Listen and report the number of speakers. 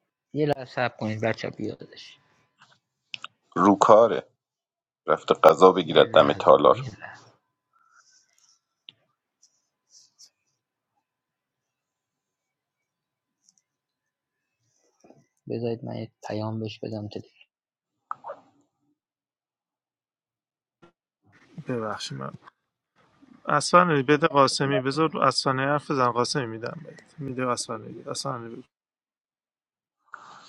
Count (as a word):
three